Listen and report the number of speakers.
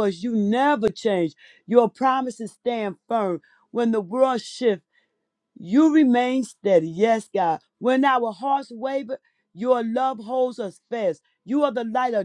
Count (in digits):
1